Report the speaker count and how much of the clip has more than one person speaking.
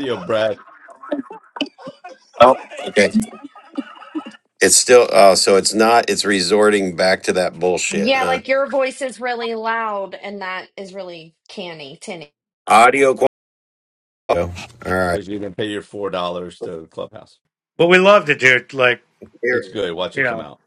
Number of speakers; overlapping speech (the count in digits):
4, about 5%